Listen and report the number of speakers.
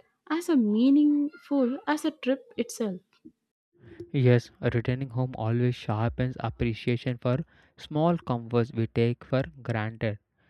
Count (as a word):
two